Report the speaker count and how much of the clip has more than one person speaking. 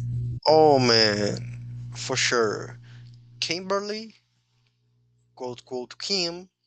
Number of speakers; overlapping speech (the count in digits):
1, no overlap